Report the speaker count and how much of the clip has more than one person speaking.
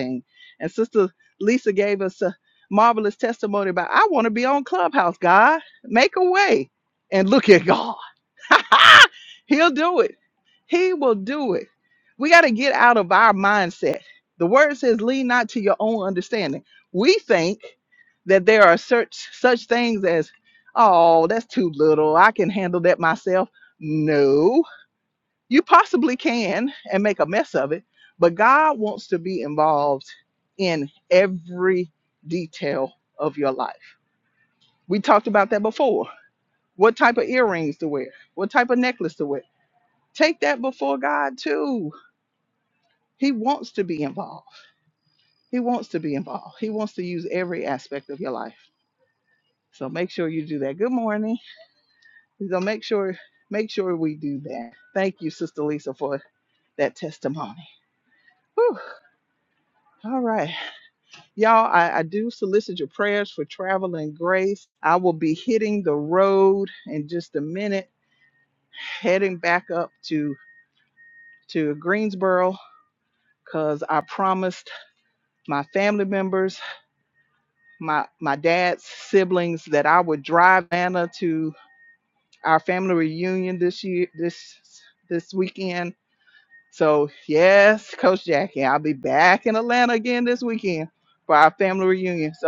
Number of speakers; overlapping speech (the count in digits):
1, no overlap